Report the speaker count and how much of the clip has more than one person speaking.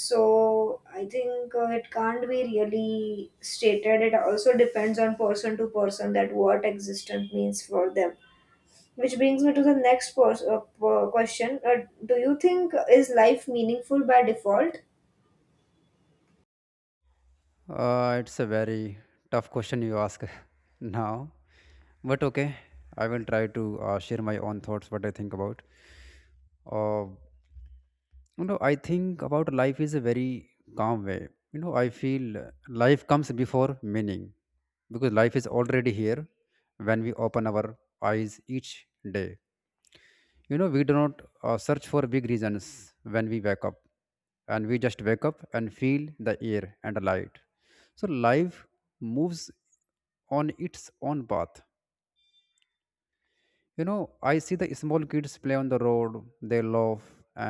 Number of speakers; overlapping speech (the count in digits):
2, no overlap